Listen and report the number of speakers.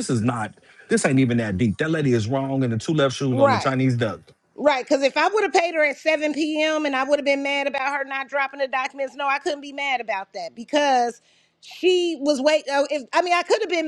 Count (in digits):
2